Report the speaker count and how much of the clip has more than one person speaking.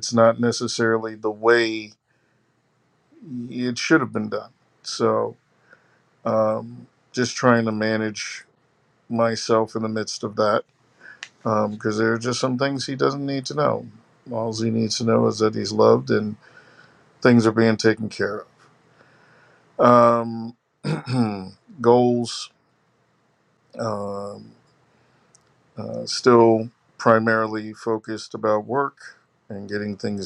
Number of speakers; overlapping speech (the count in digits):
1, no overlap